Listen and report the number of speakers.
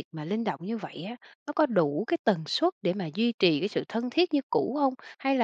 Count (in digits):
1